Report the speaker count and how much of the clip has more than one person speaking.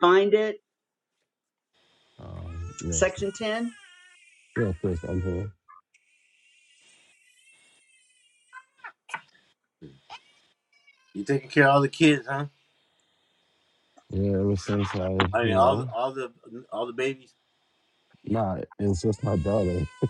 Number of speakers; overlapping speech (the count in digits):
3, about 3%